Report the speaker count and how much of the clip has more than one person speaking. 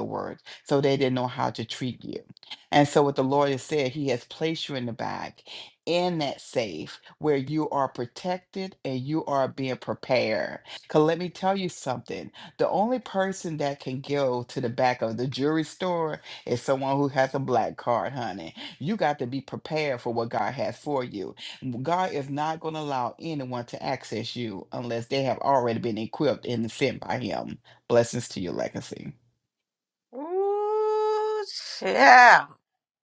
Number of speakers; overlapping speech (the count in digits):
2, no overlap